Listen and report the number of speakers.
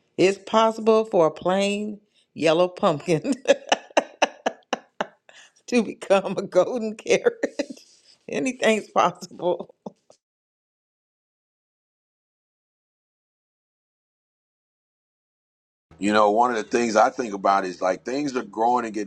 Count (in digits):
2